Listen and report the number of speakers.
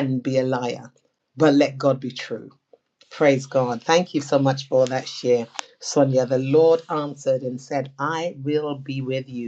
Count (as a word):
one